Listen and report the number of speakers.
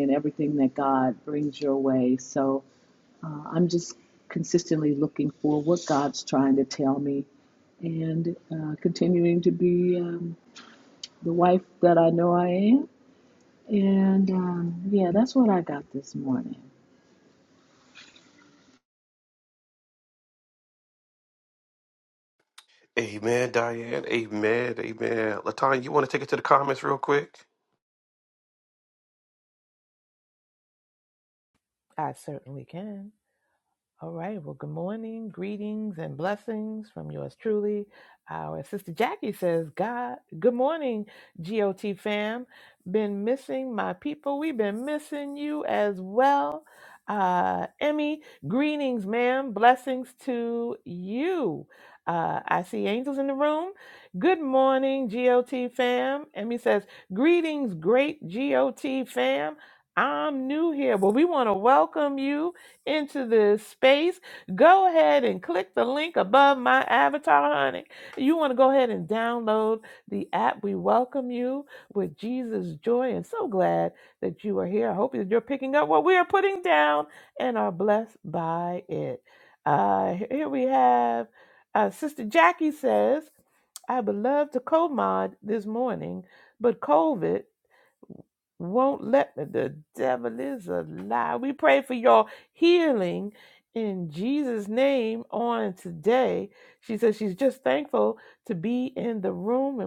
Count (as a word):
three